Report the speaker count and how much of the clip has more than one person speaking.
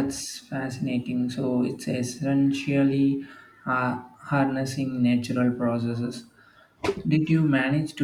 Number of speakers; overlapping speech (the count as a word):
one, no overlap